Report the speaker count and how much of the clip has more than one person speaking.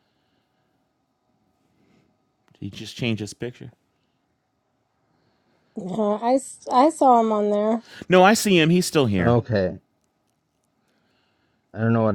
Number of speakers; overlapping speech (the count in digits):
3, about 1%